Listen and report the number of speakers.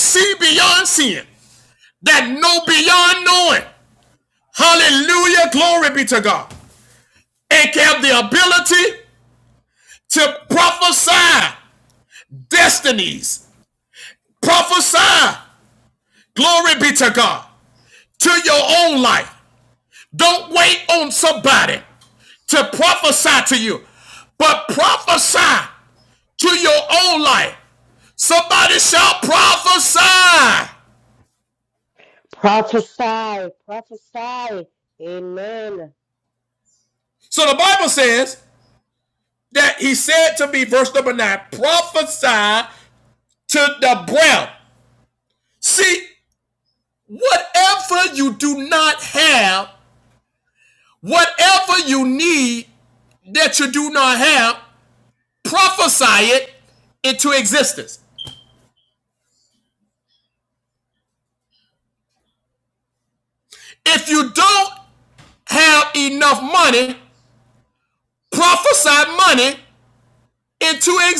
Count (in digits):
2